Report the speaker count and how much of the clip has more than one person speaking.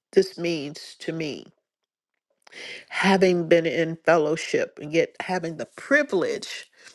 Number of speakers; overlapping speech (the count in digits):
1, no overlap